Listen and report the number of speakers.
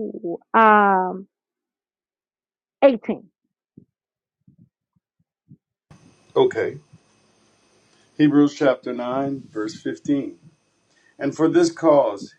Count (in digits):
2